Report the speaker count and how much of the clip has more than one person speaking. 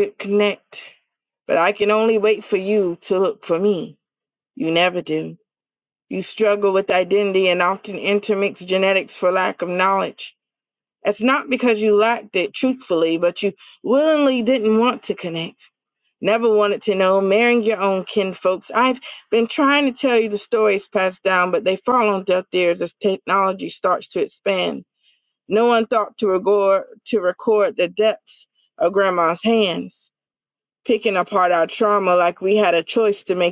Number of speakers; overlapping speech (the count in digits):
1, no overlap